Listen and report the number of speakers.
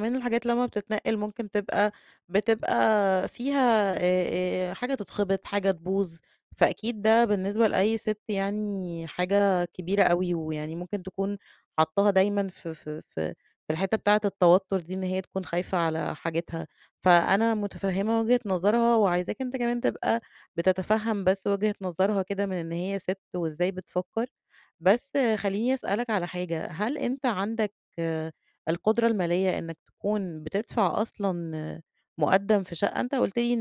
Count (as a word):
one